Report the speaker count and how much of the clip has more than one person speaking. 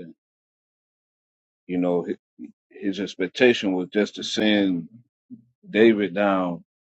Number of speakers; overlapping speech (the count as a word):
one, no overlap